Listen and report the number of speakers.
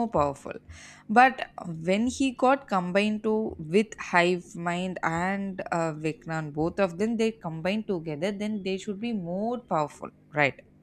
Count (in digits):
1